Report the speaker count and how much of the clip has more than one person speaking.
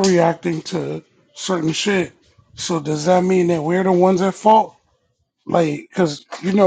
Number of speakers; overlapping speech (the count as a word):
one, no overlap